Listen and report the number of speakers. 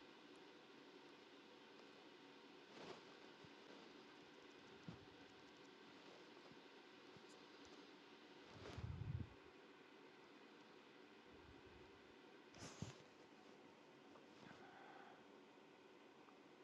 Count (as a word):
zero